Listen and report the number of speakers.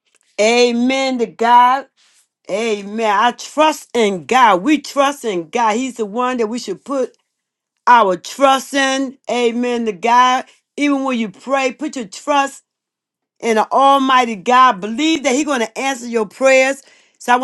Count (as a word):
one